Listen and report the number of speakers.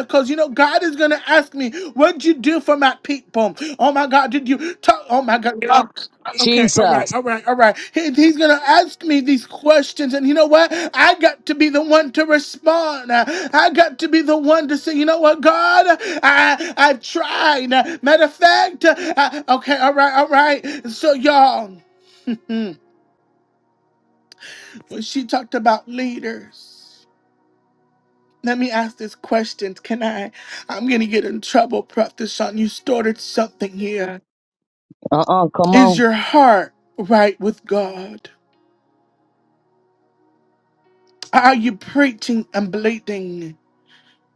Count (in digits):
2